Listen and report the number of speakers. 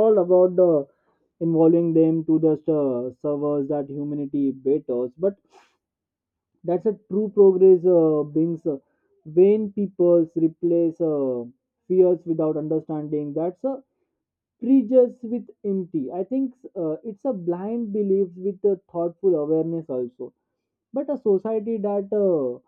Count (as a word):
one